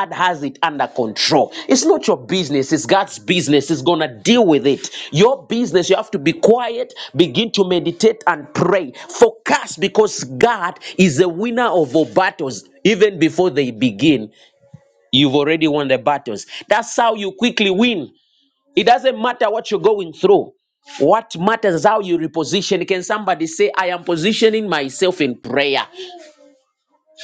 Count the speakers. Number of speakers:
1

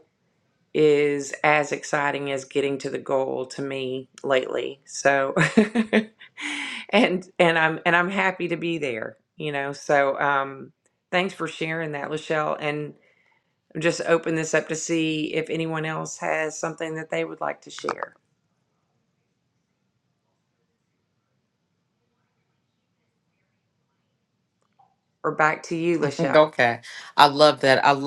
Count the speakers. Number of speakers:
2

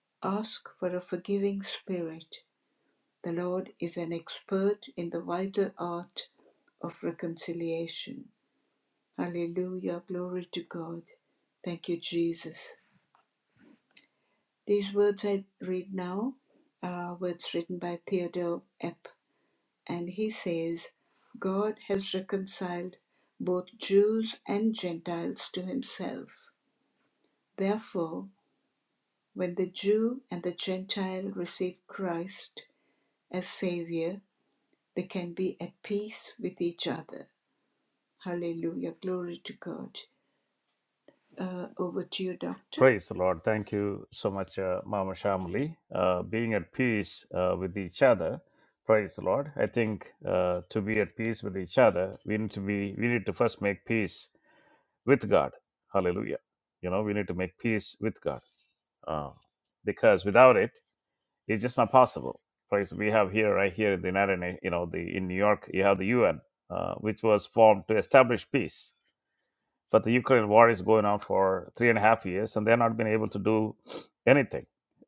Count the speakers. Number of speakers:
2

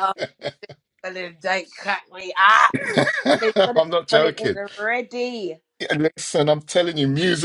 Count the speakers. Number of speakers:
3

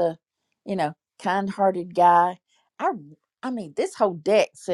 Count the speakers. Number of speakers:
1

